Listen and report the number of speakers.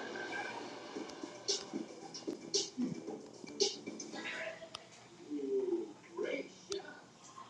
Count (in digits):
0